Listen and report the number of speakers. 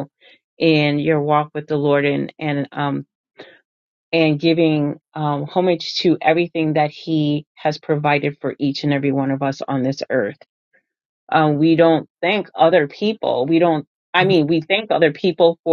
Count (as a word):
one